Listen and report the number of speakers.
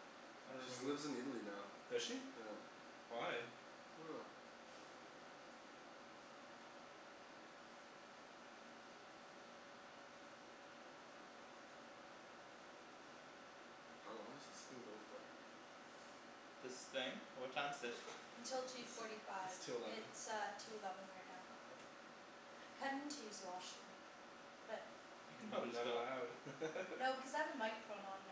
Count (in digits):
4